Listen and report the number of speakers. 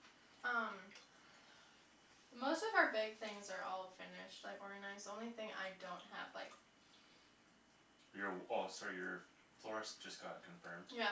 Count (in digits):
2